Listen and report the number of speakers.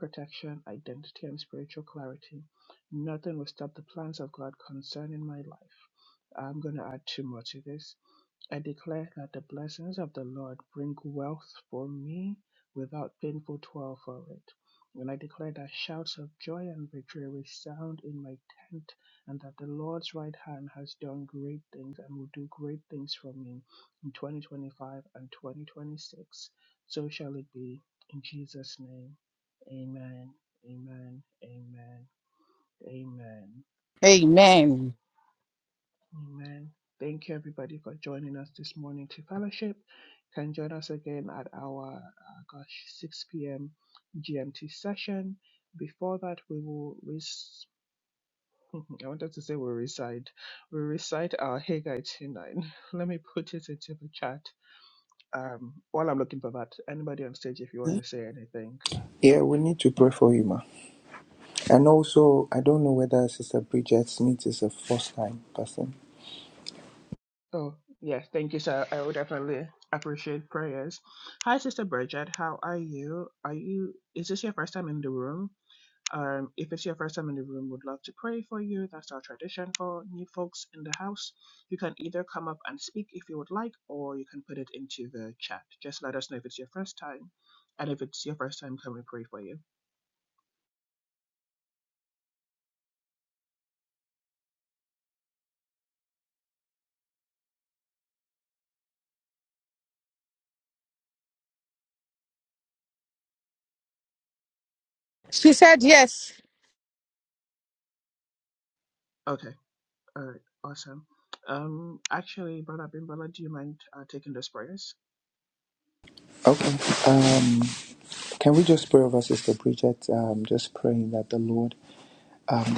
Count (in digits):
3